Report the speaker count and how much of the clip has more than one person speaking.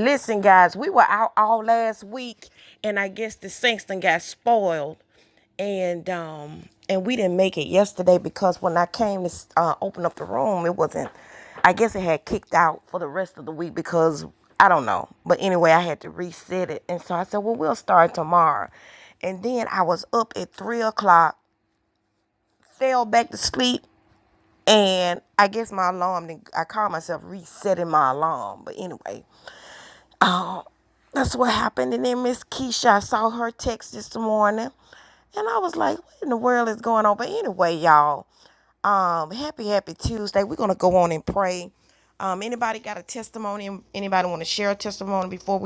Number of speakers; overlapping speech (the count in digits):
1, no overlap